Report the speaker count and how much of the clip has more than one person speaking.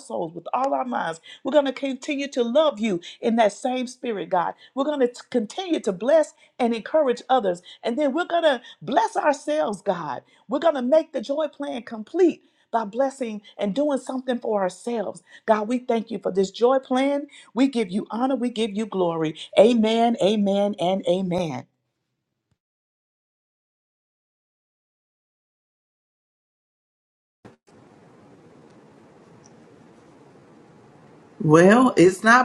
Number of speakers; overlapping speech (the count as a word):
two, no overlap